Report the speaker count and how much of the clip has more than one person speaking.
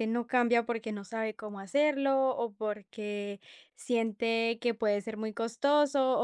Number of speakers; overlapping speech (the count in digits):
1, no overlap